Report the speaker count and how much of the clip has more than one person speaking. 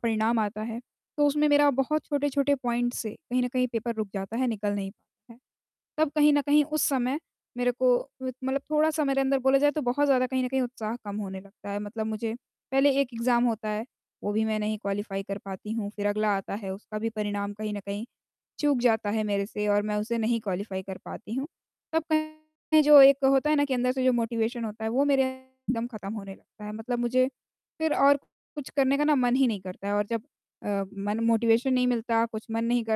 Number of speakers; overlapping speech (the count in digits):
1, no overlap